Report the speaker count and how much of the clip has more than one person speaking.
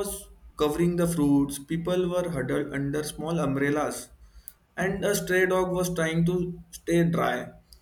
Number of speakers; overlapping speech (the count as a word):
one, no overlap